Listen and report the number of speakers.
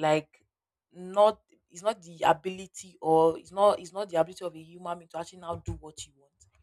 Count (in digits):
1